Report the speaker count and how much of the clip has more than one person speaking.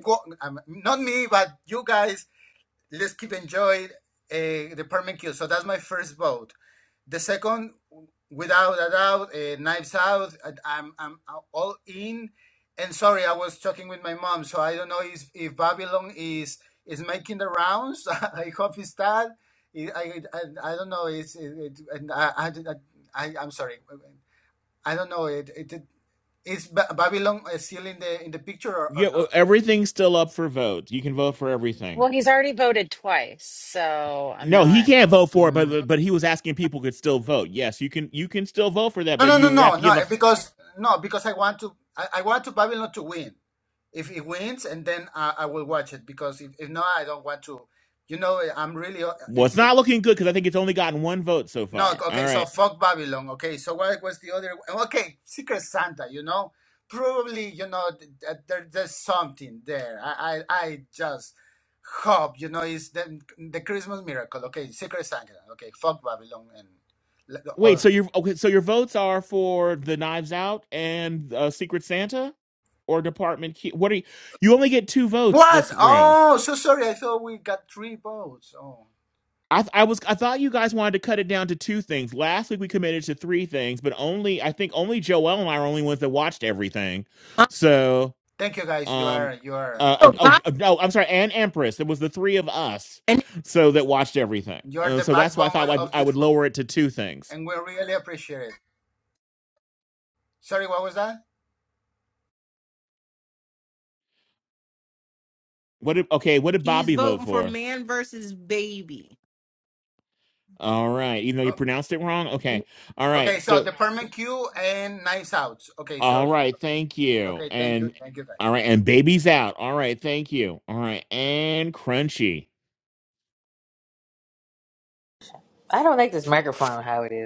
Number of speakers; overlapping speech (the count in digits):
5, about 7%